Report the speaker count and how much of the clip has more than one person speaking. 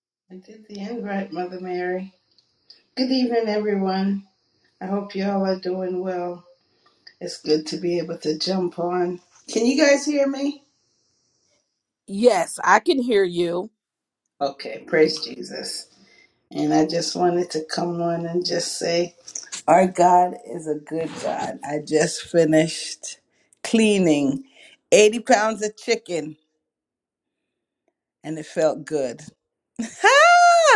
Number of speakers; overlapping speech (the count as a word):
two, no overlap